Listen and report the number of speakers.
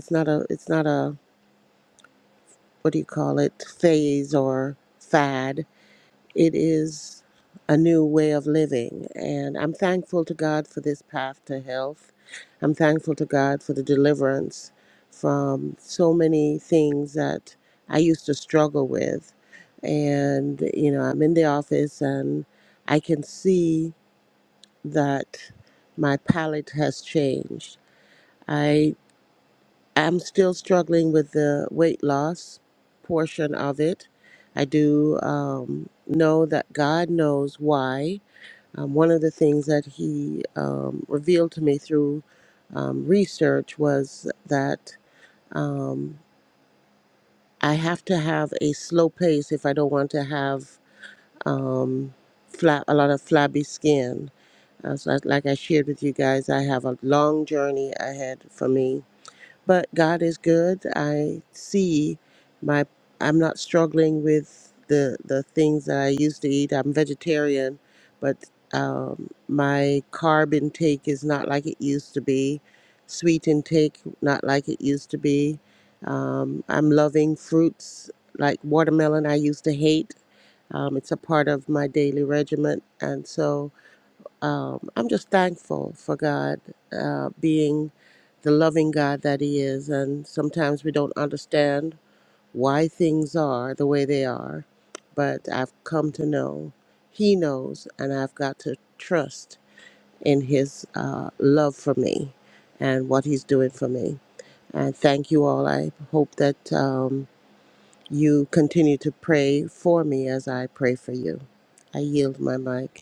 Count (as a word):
one